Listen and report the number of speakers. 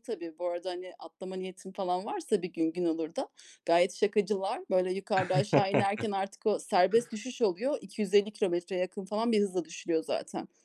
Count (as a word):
one